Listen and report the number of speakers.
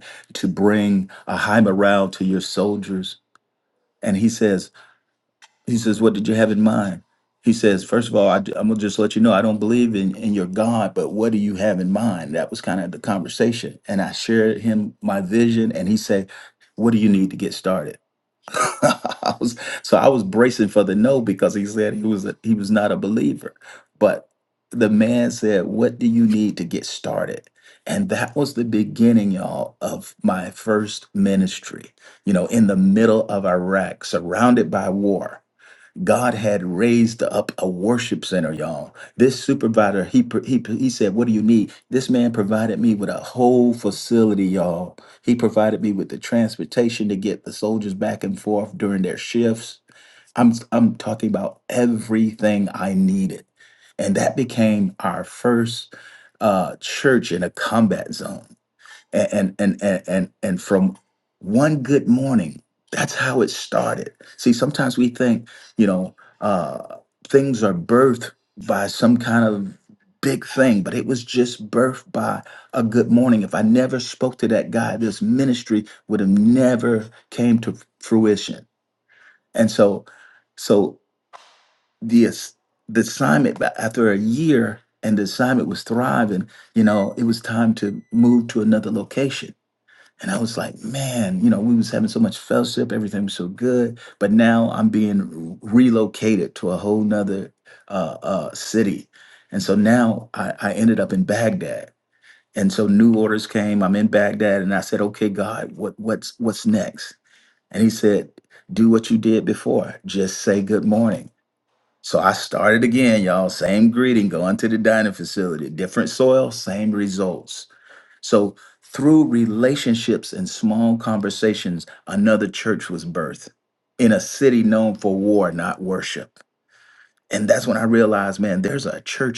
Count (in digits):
1